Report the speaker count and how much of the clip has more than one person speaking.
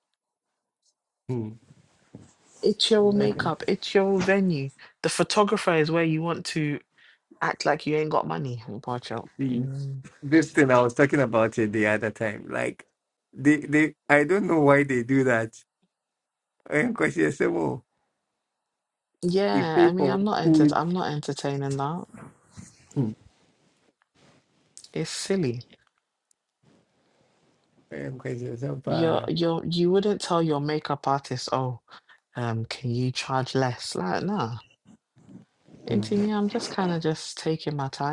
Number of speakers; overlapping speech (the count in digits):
2, about 7%